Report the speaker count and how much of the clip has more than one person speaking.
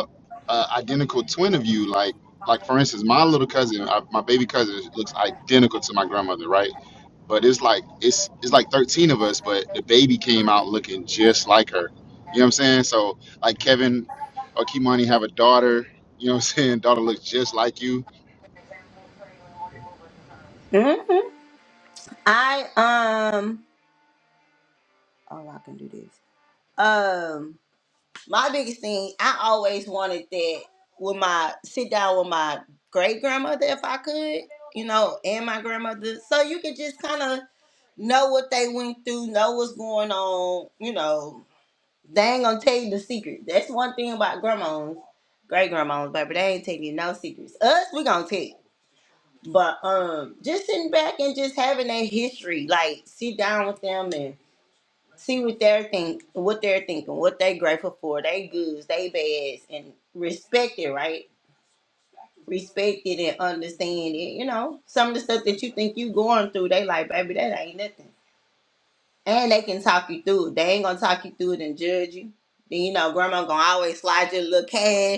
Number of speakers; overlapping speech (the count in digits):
2, no overlap